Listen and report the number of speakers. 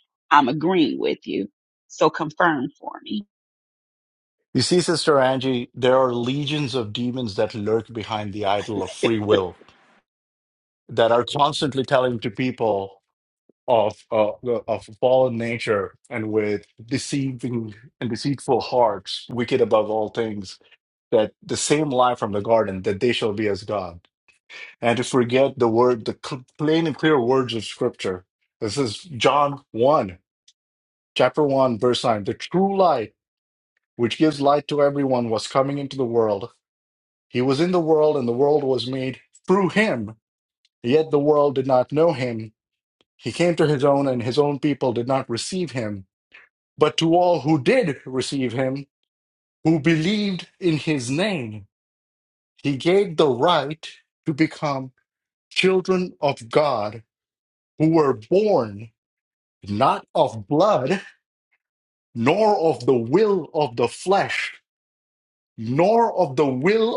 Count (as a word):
two